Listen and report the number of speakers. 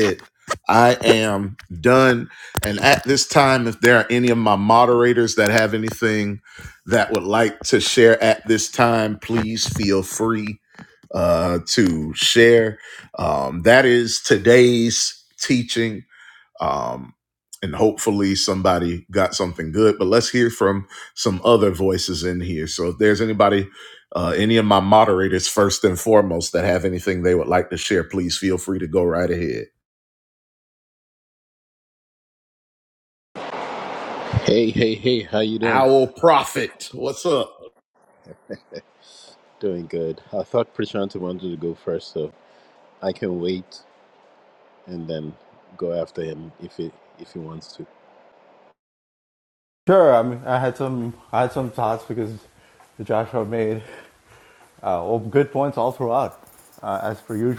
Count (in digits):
3